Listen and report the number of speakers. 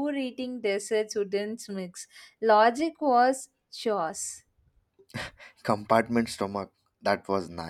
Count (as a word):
two